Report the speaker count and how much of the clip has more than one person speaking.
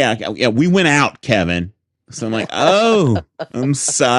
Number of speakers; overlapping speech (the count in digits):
1, no overlap